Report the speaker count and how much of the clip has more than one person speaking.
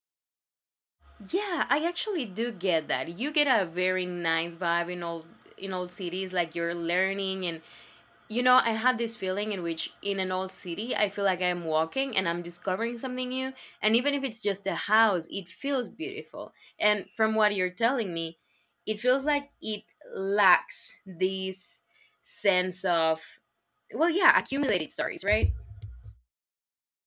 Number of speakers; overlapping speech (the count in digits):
1, no overlap